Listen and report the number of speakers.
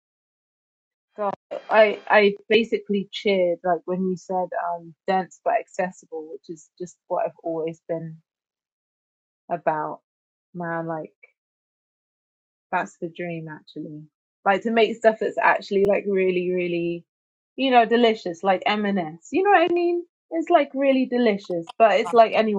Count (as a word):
one